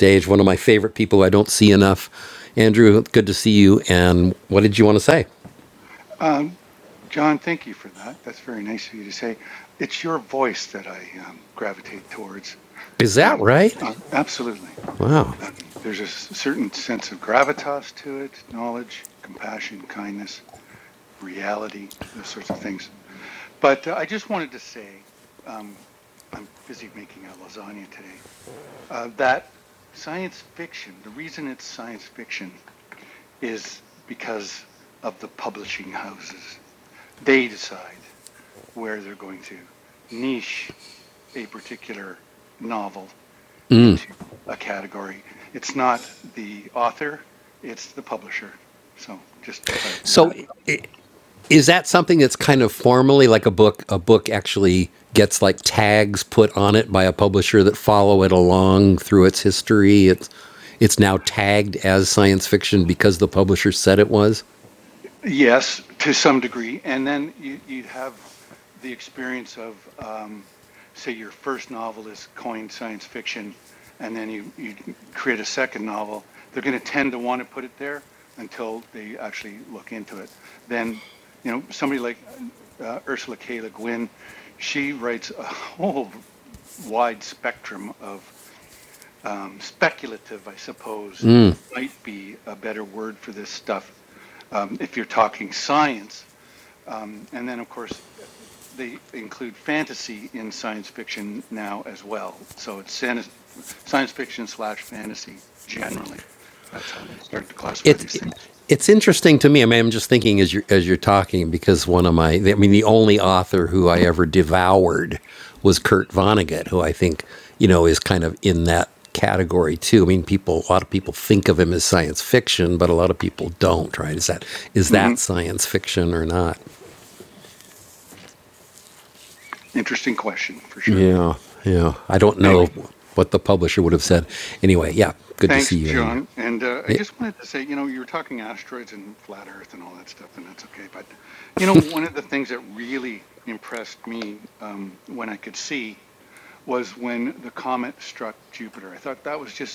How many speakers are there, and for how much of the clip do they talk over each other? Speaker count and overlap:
two, about 2%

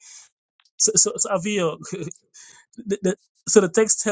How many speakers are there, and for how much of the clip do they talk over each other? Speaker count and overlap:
one, no overlap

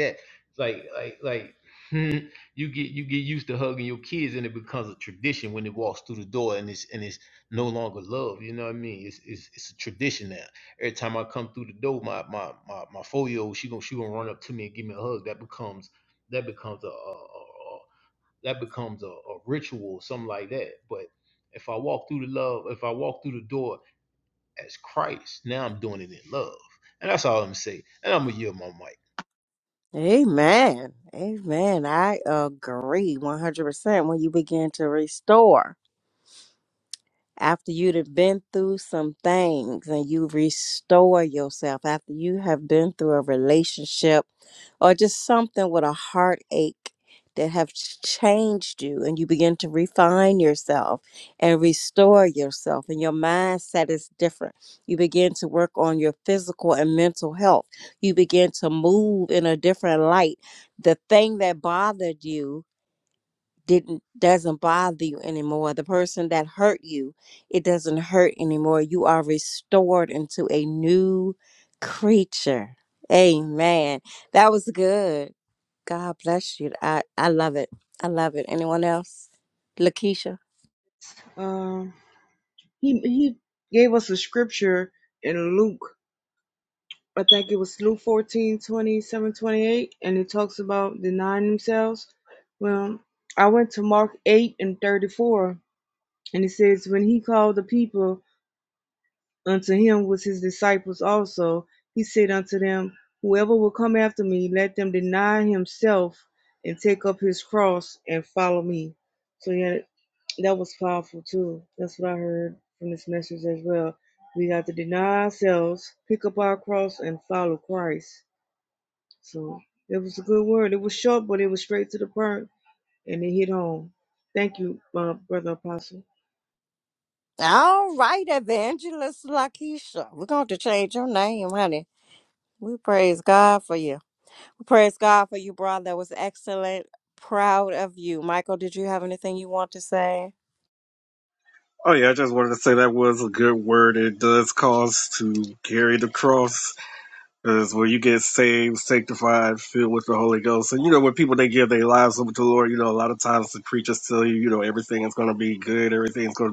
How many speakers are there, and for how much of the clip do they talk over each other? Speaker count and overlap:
four, no overlap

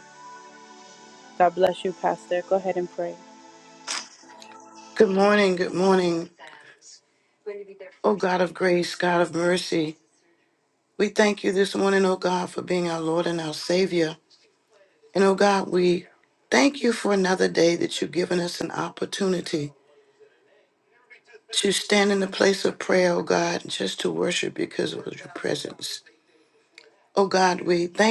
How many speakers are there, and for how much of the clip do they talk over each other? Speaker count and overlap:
two, no overlap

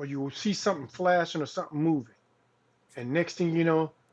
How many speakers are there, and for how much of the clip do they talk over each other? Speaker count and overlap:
one, no overlap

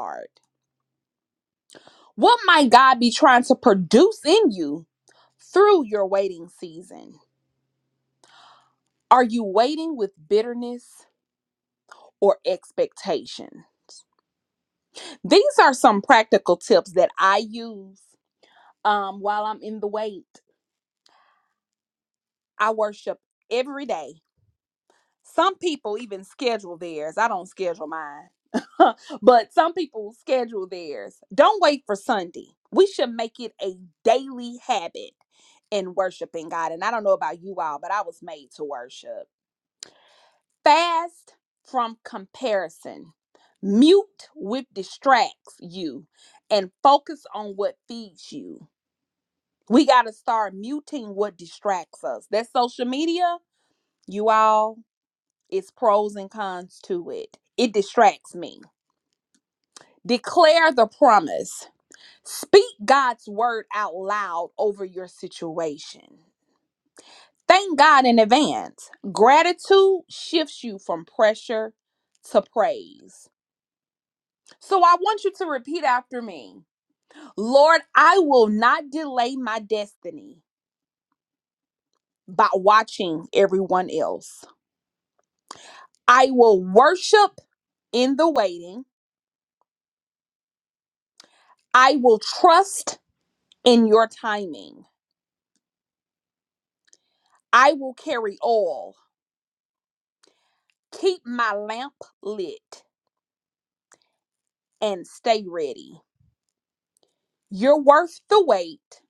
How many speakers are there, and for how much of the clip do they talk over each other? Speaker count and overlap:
one, no overlap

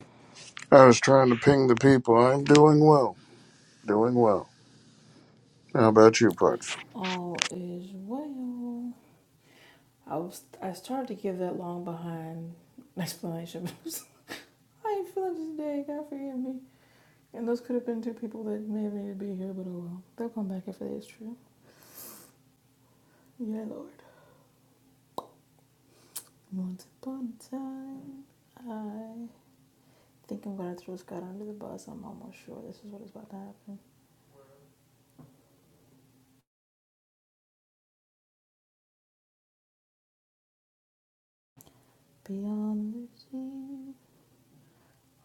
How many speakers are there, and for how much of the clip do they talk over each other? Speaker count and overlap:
two, no overlap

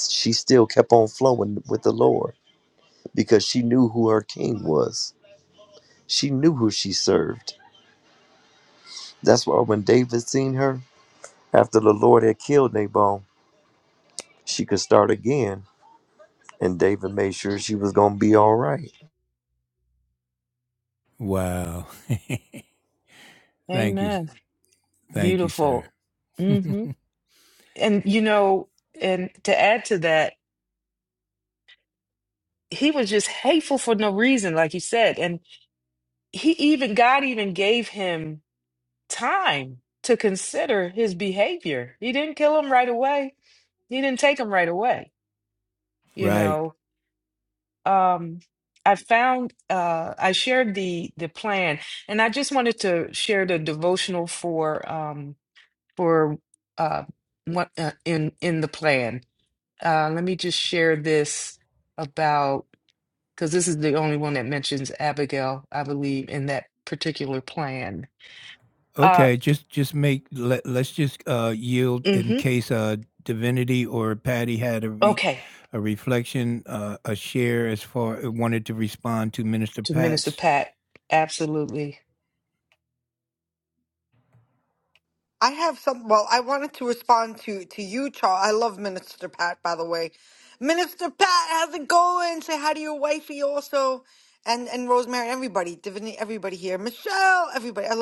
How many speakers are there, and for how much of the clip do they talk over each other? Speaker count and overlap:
four, about 3%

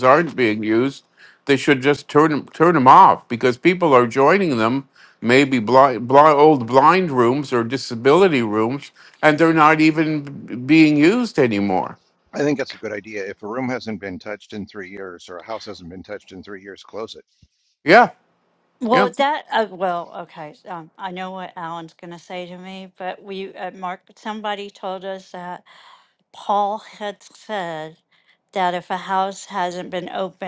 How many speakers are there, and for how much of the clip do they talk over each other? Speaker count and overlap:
three, about 1%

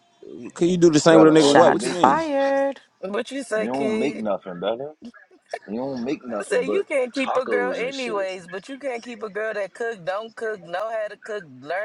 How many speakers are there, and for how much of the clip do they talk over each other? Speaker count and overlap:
four, about 32%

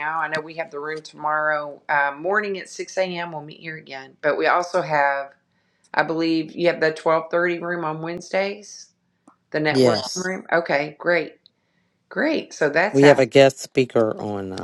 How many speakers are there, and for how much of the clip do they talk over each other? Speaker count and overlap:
two, about 4%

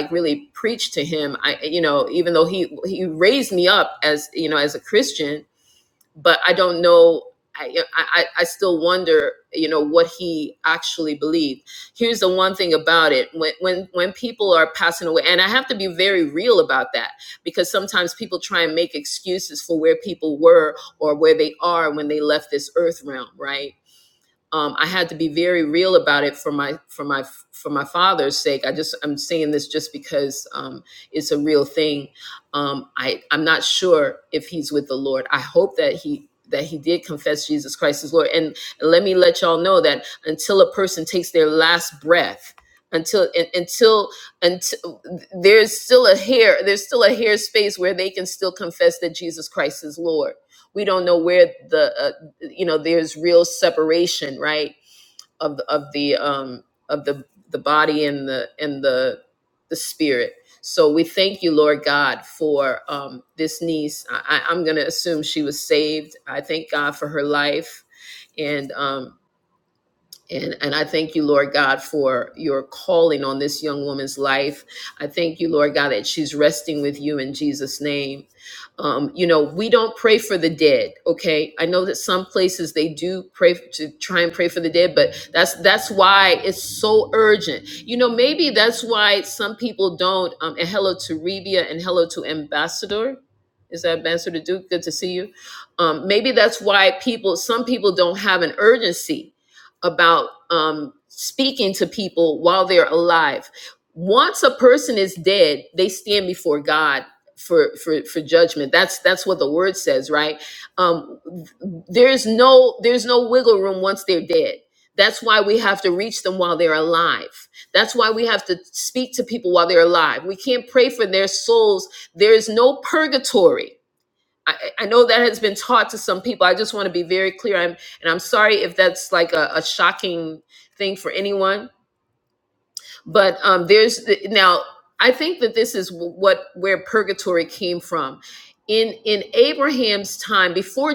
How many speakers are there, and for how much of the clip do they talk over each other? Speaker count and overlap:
one, no overlap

